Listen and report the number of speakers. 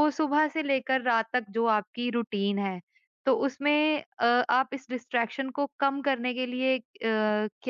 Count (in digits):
1